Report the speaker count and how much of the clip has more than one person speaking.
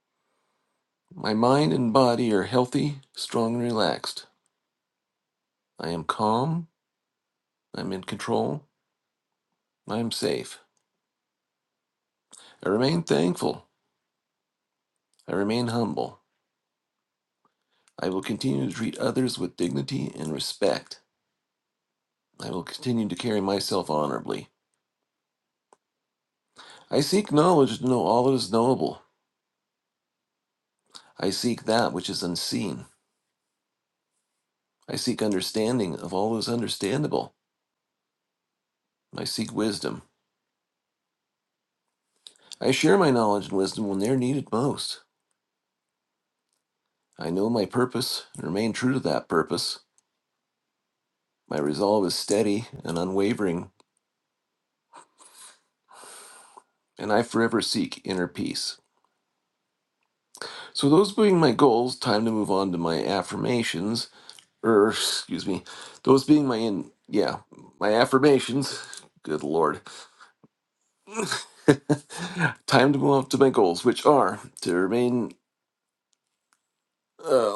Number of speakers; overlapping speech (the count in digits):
1, no overlap